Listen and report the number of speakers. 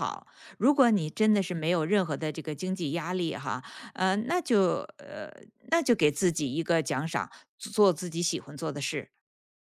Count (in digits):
1